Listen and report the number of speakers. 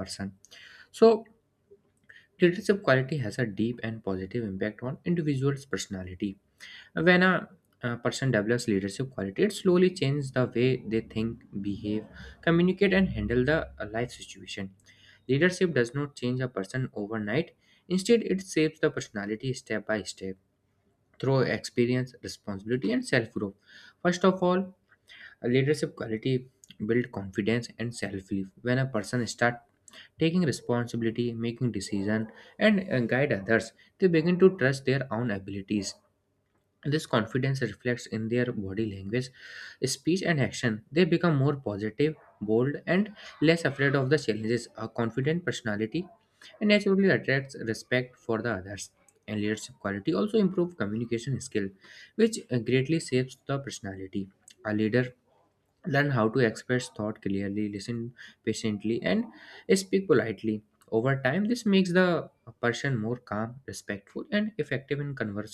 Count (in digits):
1